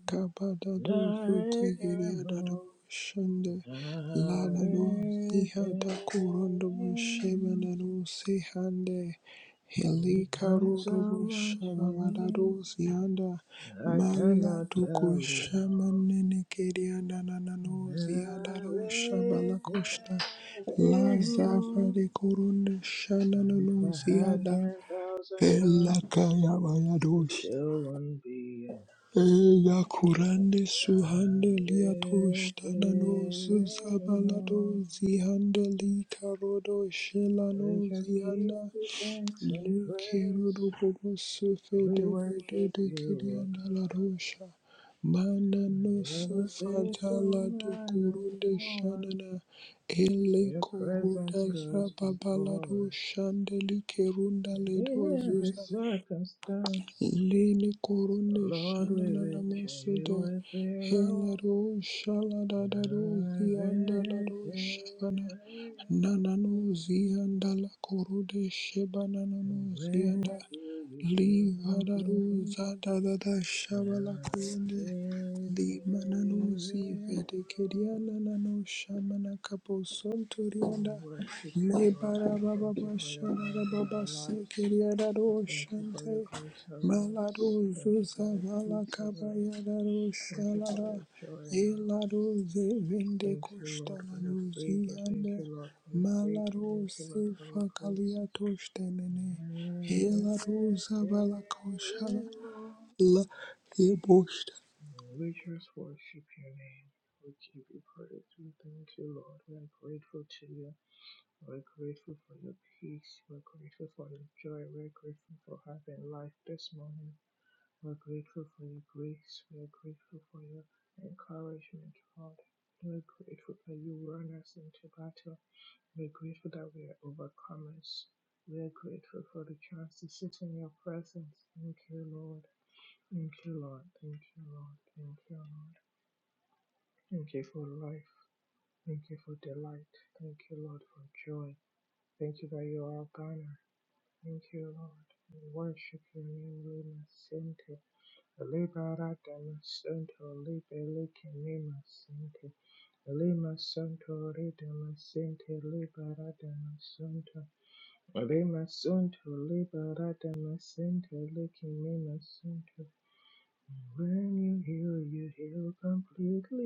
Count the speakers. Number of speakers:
2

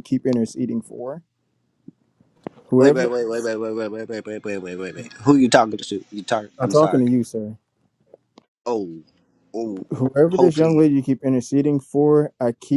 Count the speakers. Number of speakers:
2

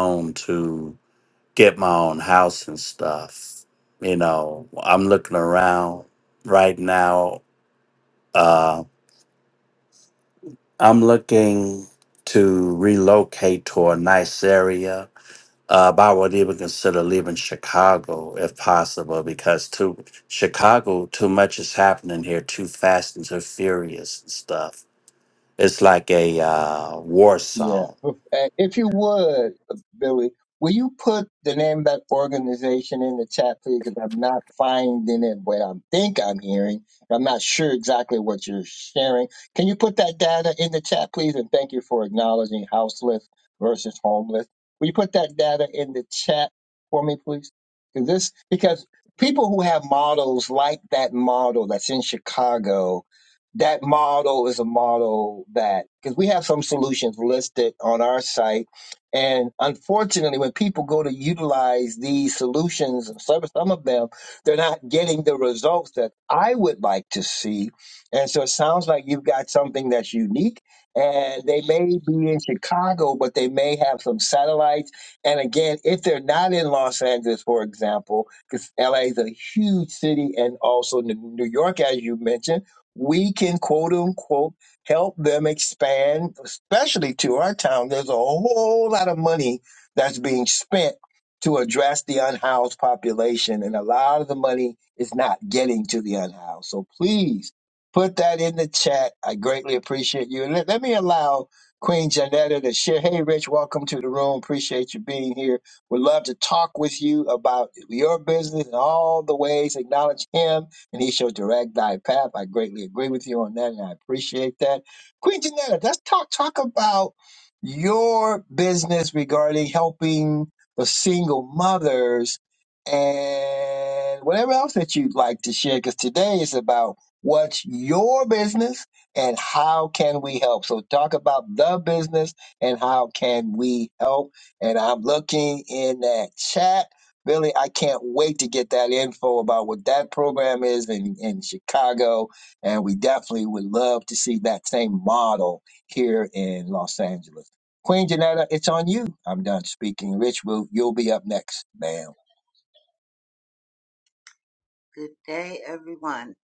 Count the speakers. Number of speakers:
3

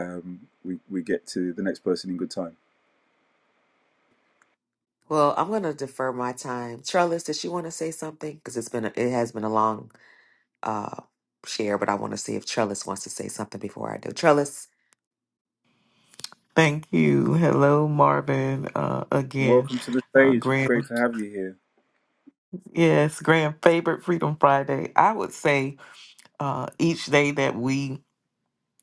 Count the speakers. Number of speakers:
3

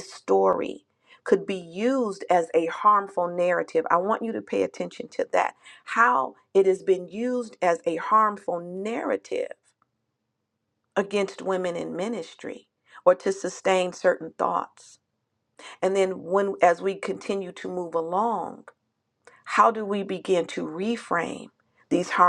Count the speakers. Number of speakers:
1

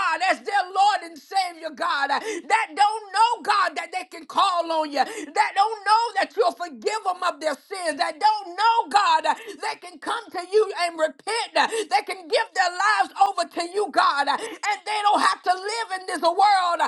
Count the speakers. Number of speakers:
1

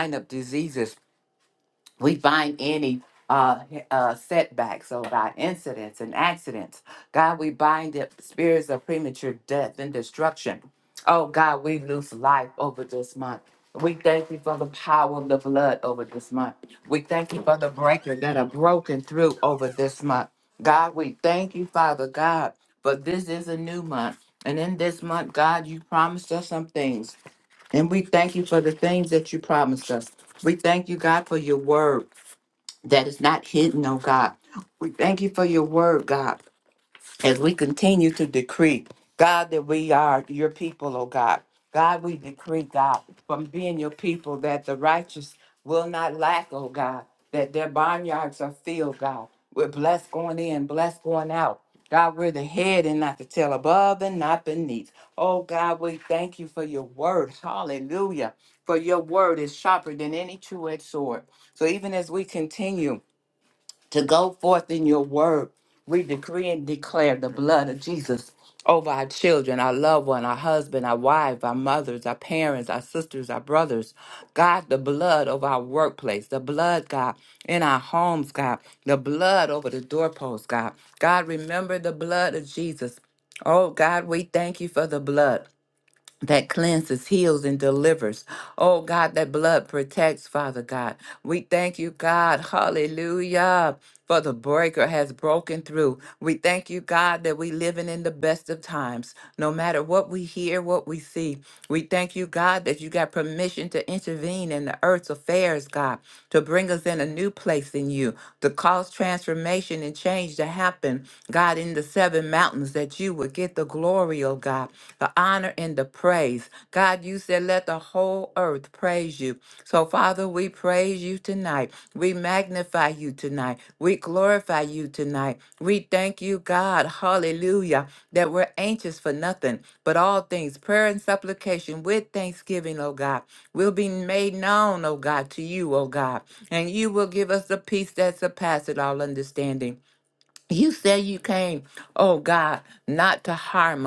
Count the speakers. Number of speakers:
1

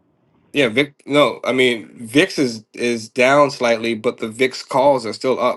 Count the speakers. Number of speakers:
1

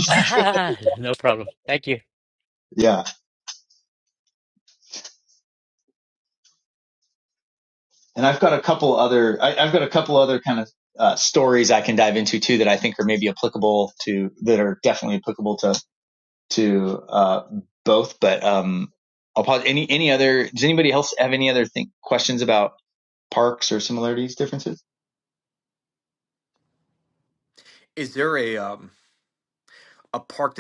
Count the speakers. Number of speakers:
3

